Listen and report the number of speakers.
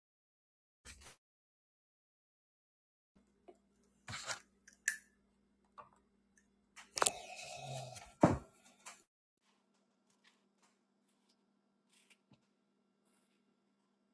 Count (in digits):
0